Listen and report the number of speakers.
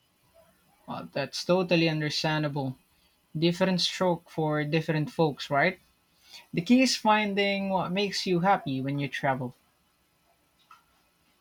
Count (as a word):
one